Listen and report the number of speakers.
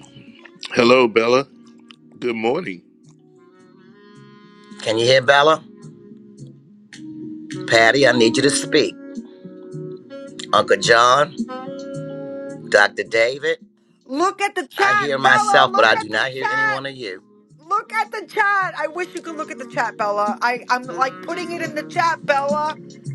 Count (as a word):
three